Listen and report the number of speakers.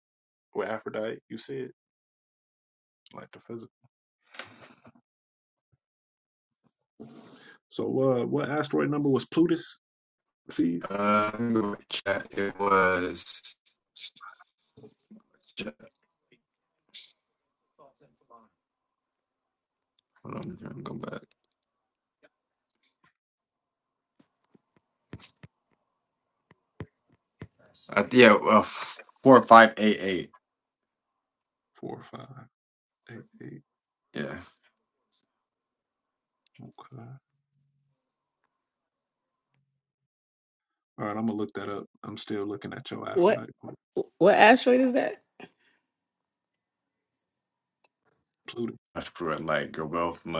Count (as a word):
three